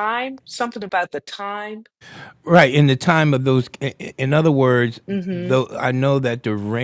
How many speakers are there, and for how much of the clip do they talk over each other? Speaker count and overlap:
2, about 4%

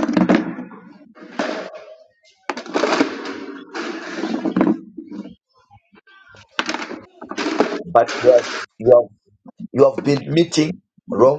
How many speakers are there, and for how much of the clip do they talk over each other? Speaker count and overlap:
1, no overlap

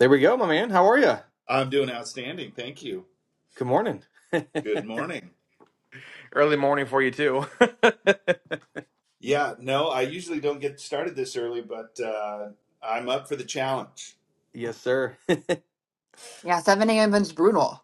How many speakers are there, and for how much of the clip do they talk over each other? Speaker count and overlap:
3, no overlap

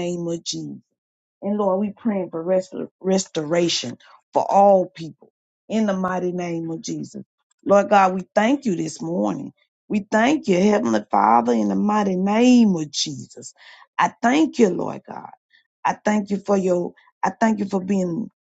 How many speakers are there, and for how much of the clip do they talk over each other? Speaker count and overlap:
1, no overlap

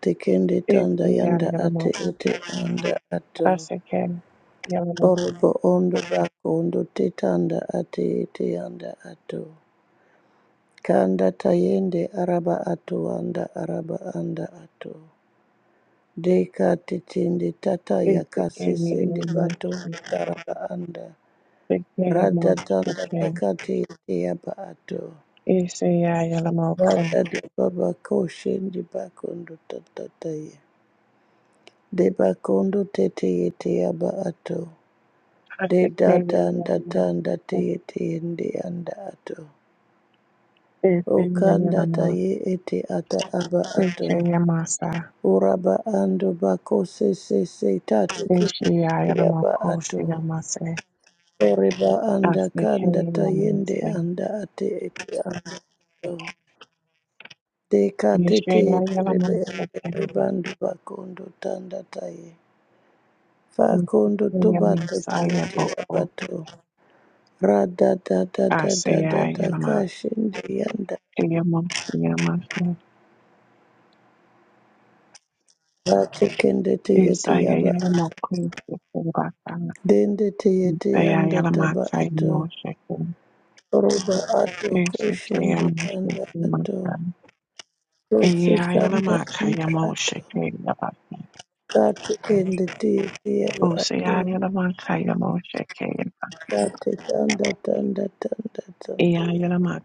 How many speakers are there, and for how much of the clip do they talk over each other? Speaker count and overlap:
2, about 18%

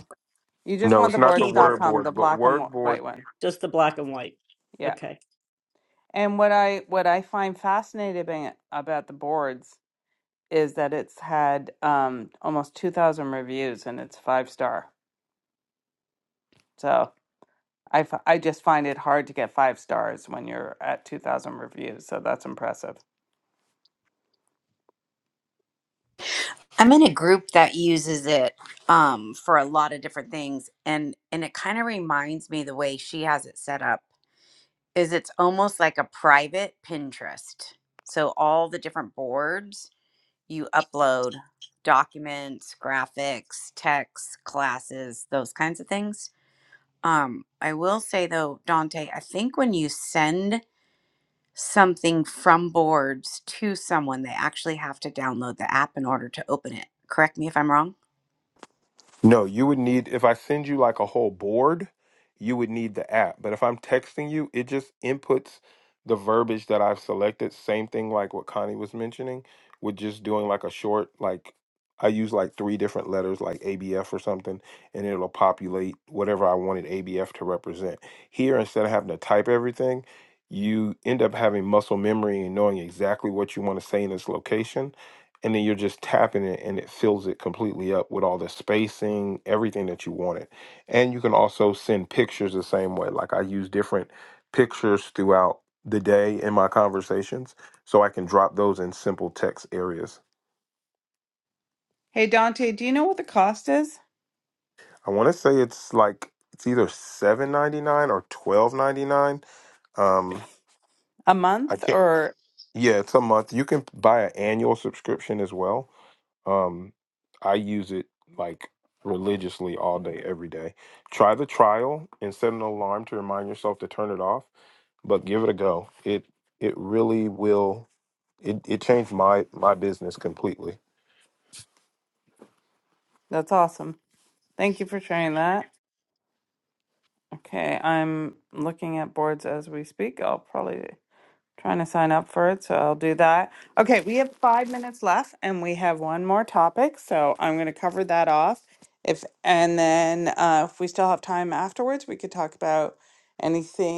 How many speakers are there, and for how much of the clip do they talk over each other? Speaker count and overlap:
4, about 2%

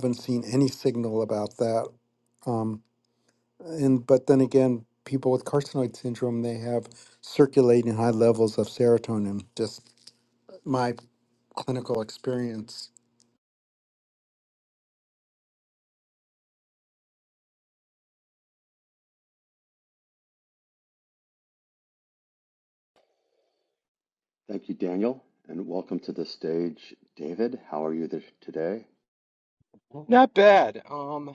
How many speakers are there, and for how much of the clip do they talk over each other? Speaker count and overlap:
3, no overlap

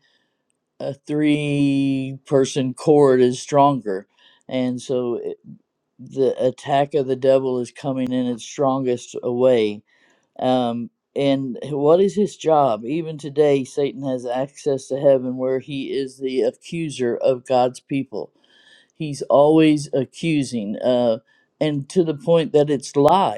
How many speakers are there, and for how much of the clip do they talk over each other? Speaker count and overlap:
1, no overlap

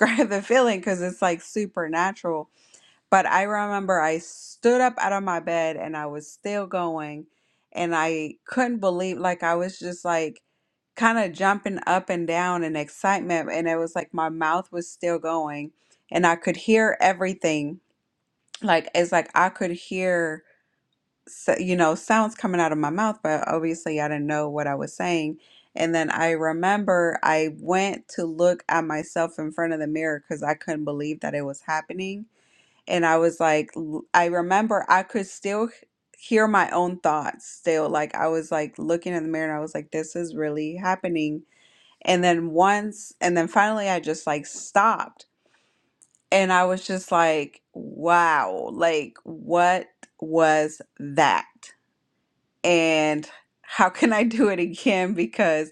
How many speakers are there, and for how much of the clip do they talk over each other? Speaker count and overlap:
1, no overlap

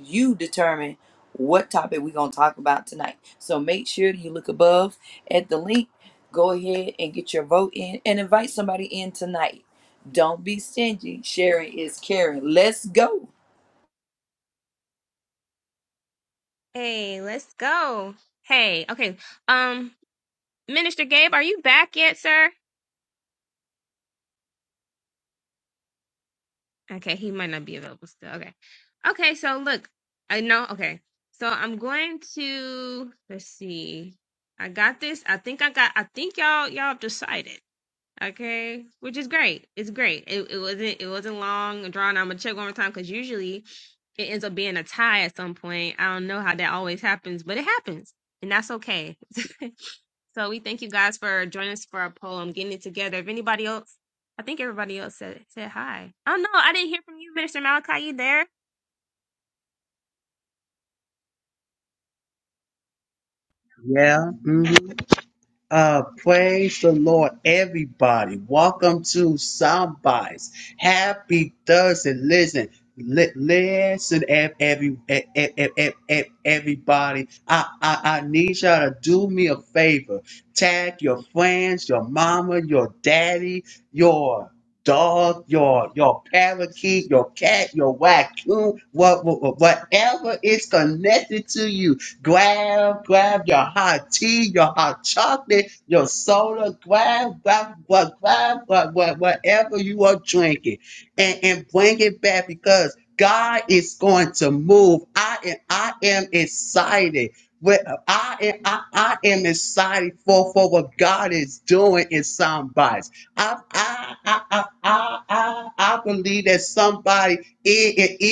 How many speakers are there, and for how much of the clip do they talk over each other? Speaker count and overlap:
3, no overlap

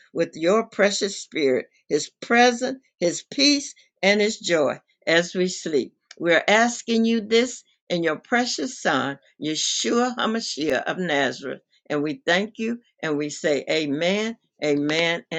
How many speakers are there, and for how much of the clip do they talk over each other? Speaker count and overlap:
1, no overlap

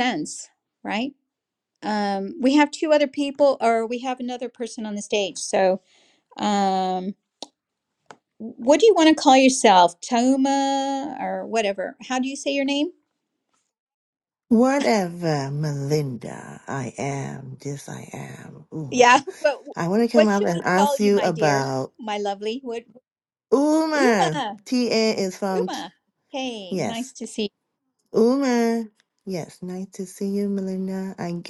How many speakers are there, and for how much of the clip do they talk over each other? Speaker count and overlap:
2, about 9%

